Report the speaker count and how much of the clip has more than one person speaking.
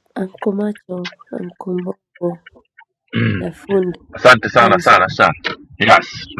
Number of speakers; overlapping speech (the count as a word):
two, about 5%